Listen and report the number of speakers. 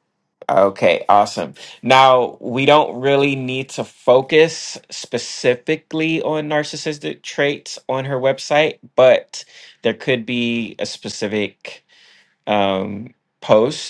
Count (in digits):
1